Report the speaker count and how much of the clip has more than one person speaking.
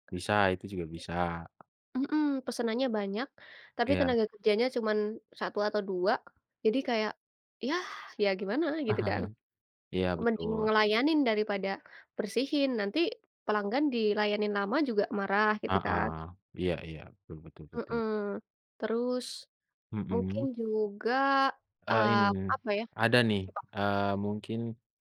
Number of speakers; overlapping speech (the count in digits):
2, about 8%